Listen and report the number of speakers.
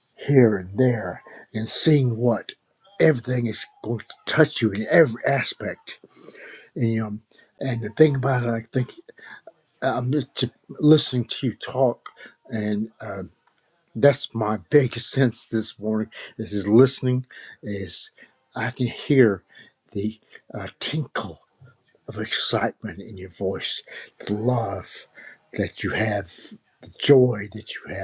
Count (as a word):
one